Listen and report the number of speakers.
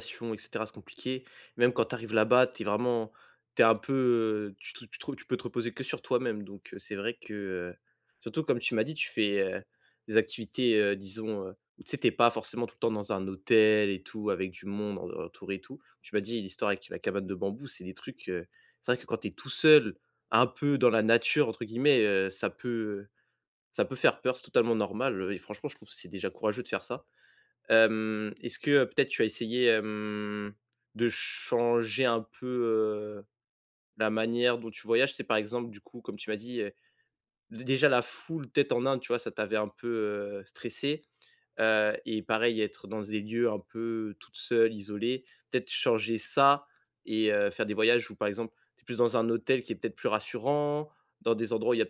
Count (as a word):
one